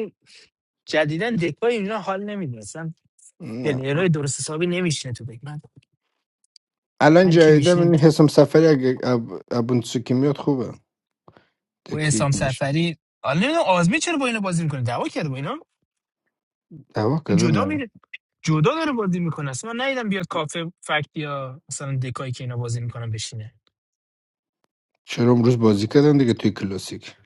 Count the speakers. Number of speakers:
2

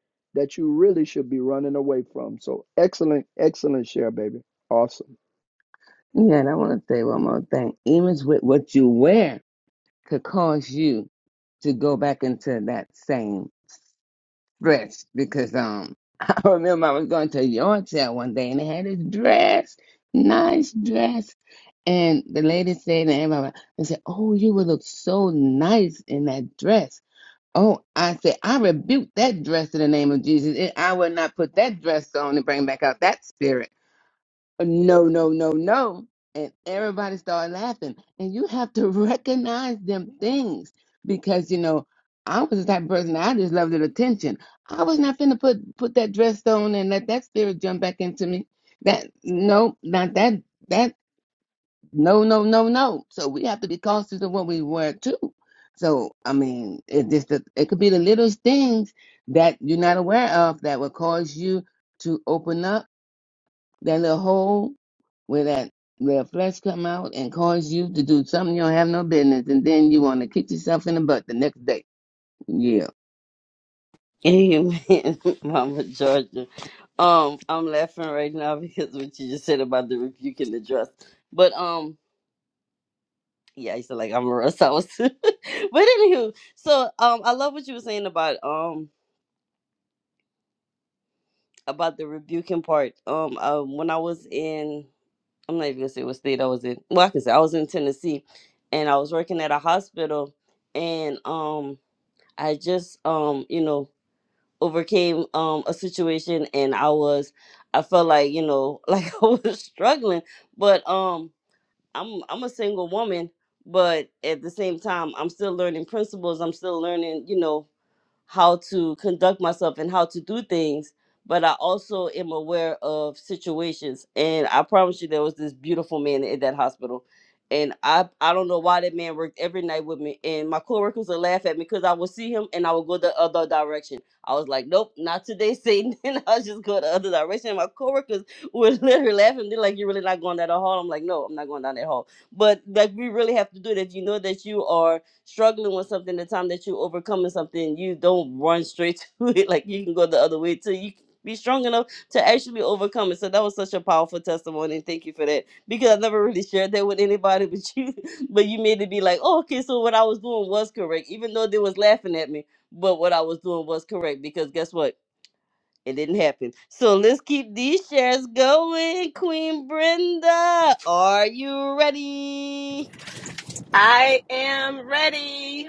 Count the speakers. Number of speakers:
4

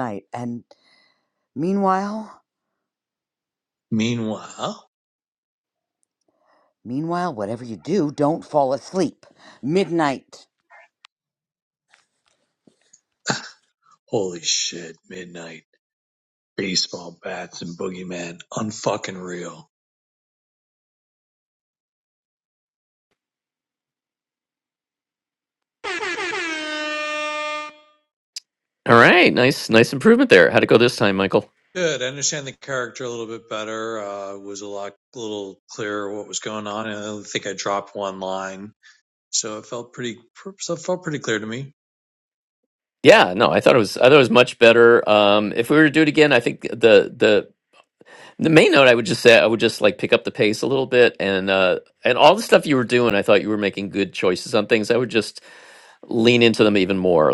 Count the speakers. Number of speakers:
3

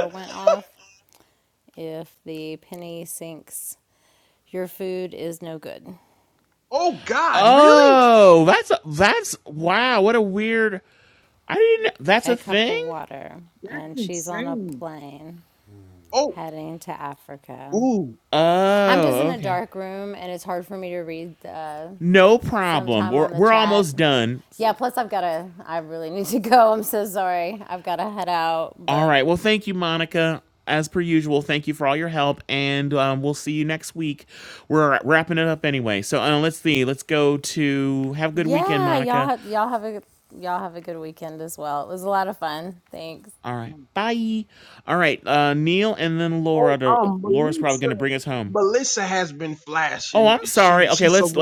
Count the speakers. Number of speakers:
3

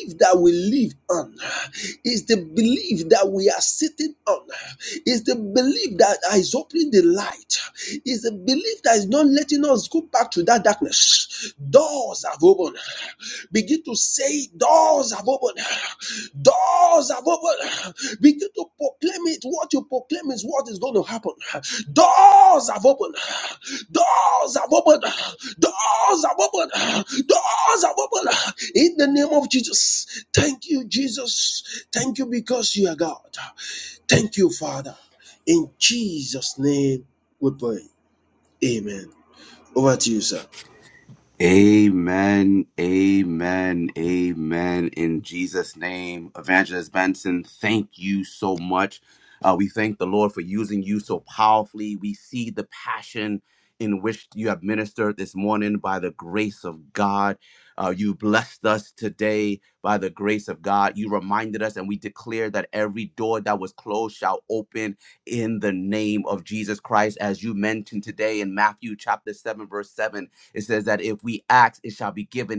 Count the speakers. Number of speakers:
2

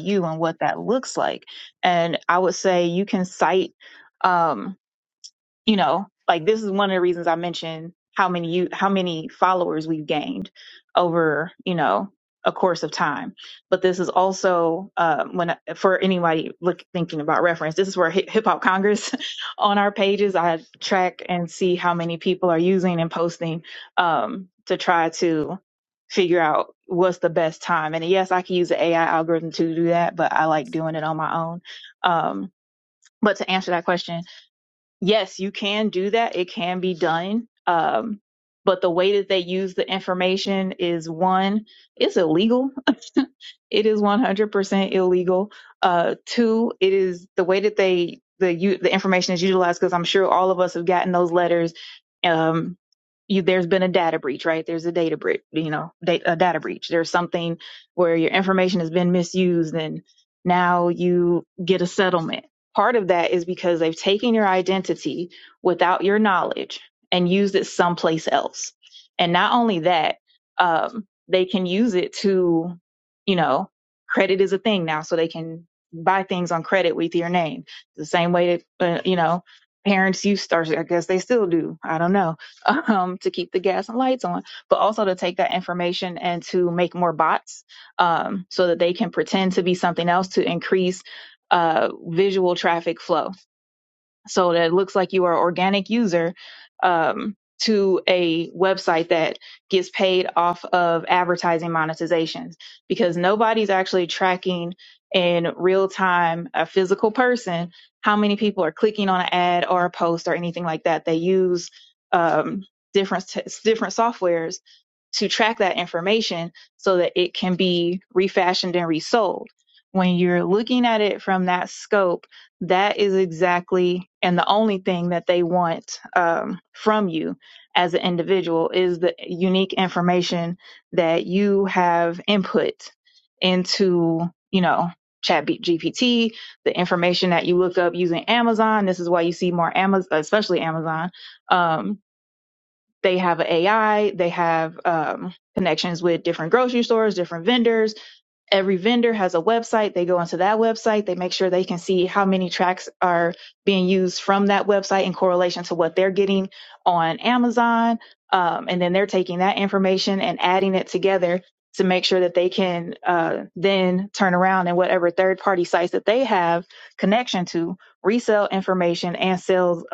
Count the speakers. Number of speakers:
1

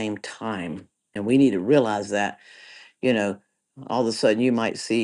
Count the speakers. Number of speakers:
1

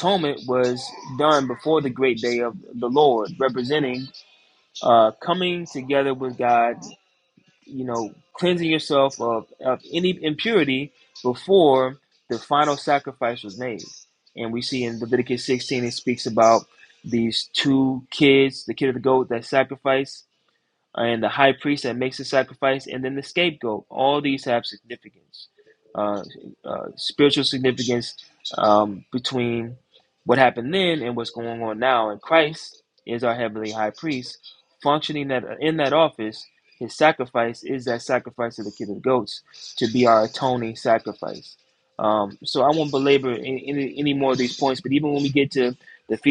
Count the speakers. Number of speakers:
1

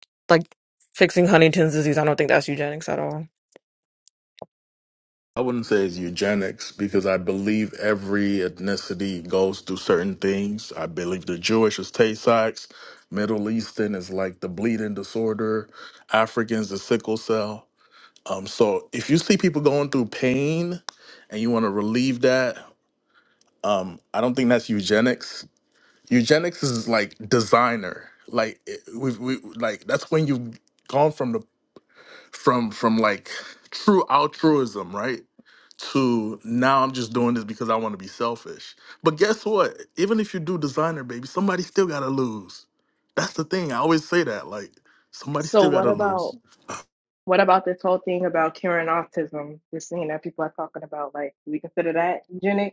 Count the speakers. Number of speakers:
3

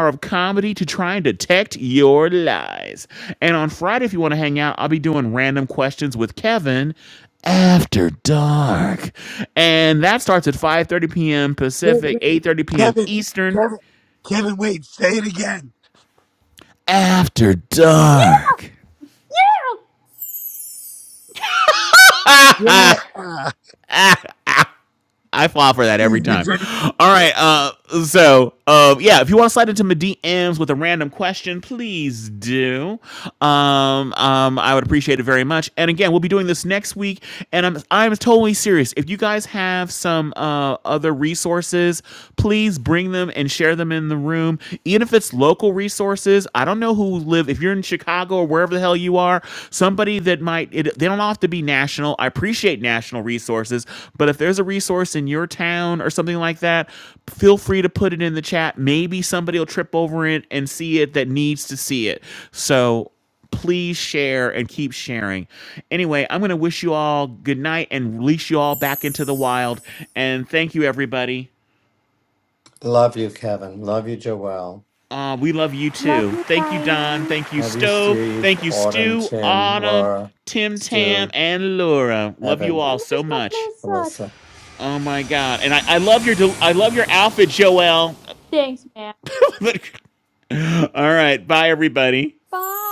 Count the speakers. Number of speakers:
4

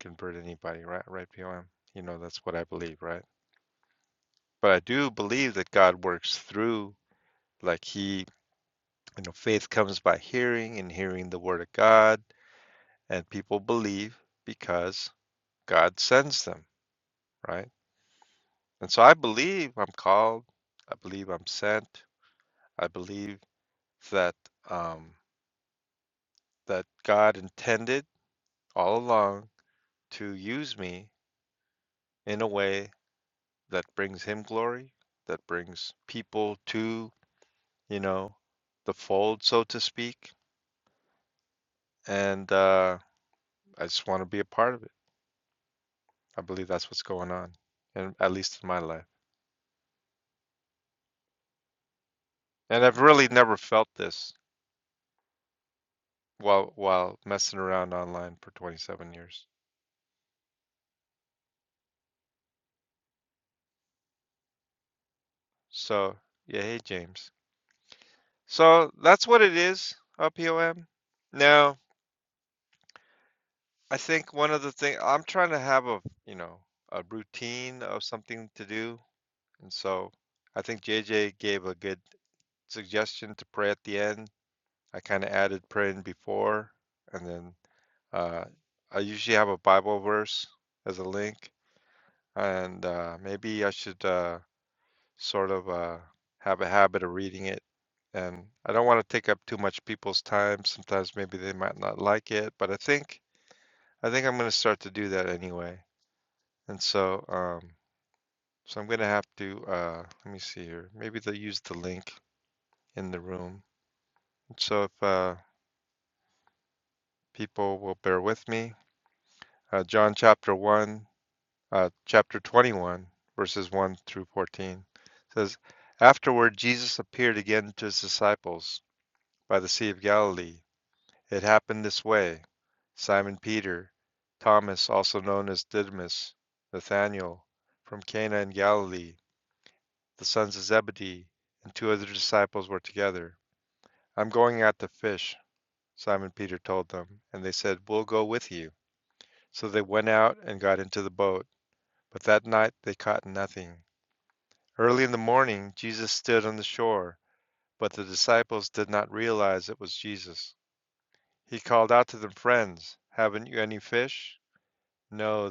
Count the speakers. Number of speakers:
1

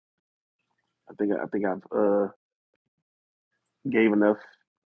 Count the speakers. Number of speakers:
1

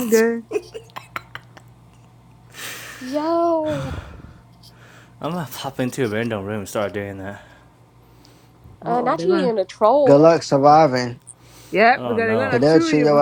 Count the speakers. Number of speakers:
4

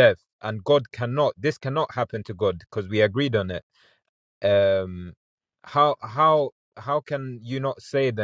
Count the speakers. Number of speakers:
1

